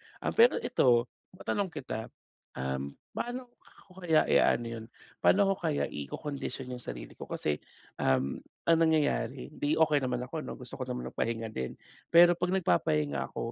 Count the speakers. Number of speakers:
1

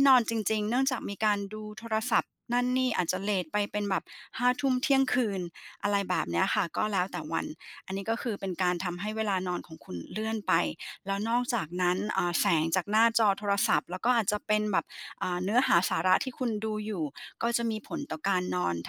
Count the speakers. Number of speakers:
1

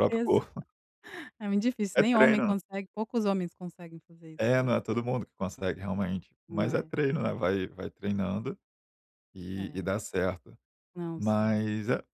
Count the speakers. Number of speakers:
2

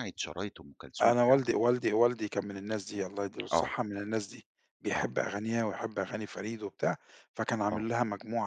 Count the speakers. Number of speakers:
2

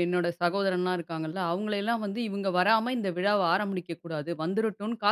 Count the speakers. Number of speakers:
1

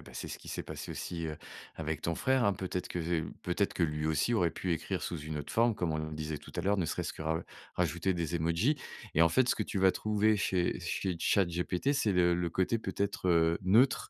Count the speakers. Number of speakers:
1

